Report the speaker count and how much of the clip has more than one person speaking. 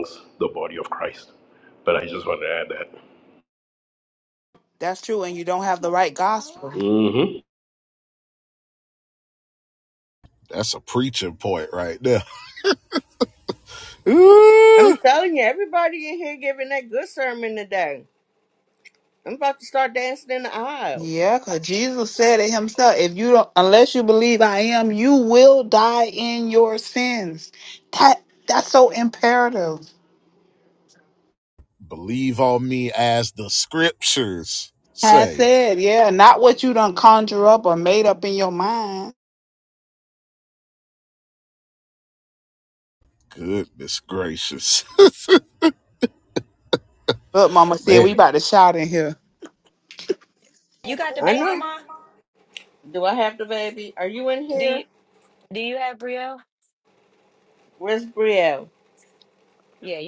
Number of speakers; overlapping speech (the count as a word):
five, about 3%